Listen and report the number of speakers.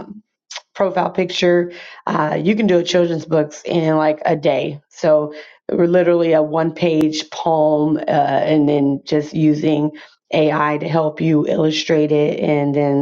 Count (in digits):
1